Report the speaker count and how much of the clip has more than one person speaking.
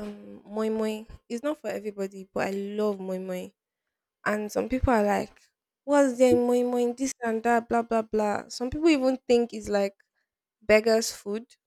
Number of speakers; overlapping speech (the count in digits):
1, no overlap